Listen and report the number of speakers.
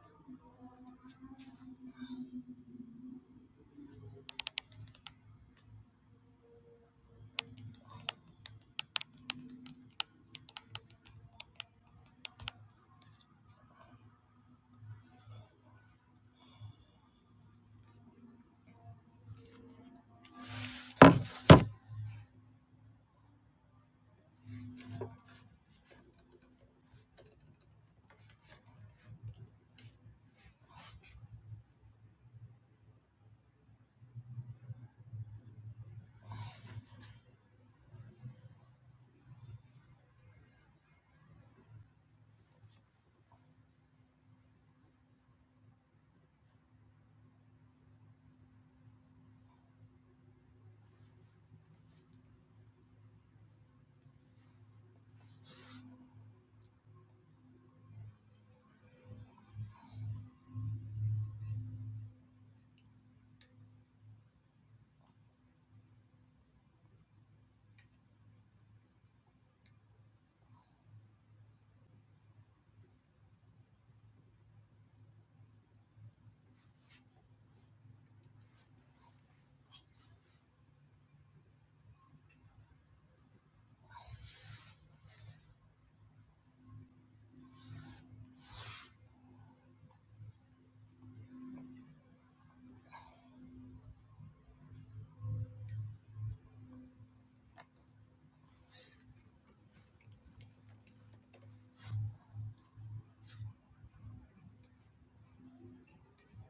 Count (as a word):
zero